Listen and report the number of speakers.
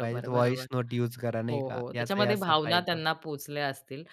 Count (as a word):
two